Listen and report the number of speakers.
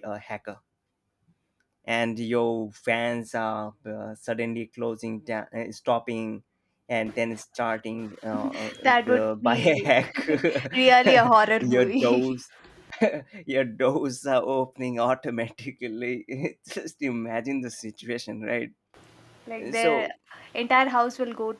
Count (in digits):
2